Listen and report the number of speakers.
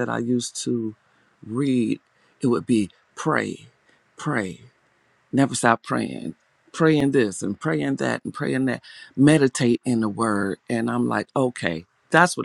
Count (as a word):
one